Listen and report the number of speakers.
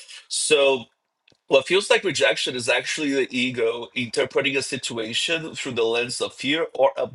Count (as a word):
one